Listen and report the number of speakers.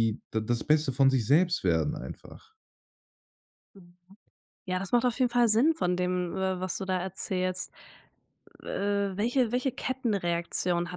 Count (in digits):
2